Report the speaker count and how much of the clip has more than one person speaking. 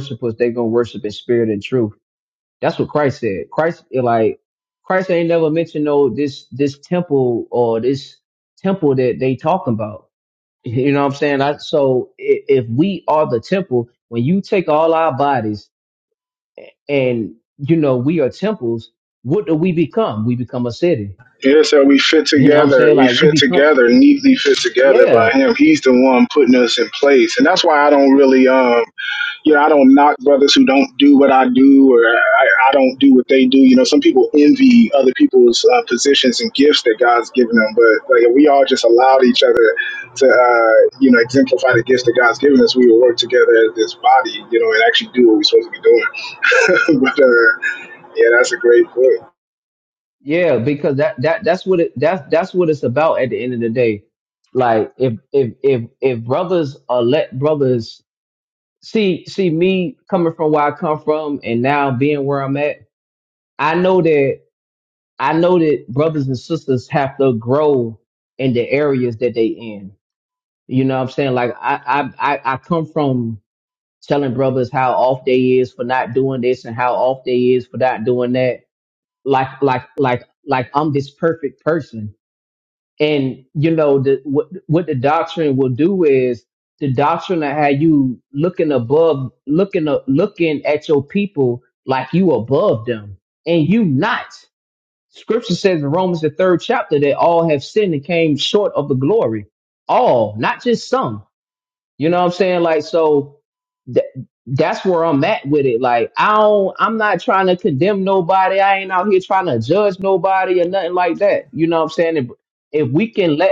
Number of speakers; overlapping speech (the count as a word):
two, about 2%